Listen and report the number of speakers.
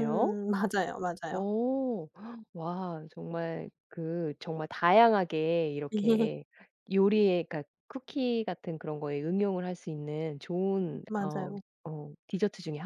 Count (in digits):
2